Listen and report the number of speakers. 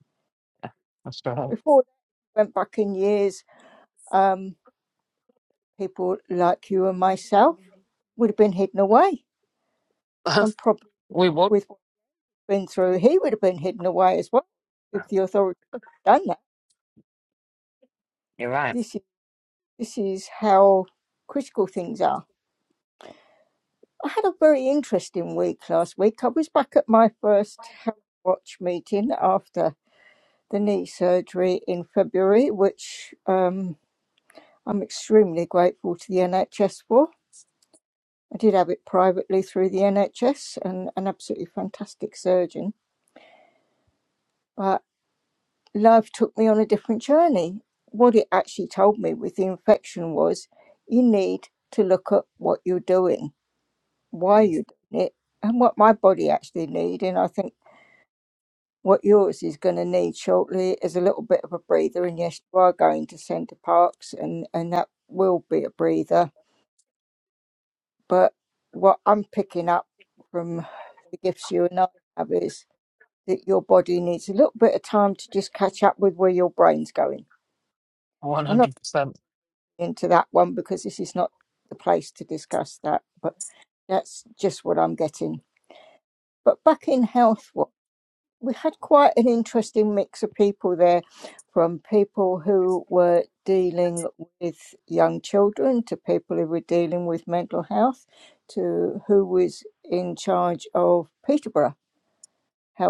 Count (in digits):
2